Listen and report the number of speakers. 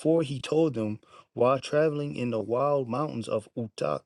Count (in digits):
1